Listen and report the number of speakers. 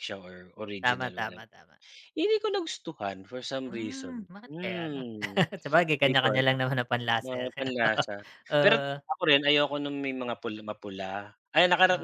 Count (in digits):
2